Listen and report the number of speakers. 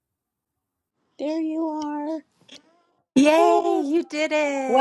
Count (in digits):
2